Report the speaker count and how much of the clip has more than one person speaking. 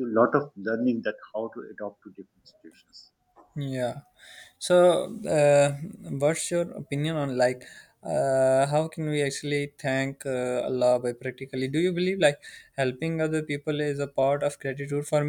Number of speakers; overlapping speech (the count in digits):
2, no overlap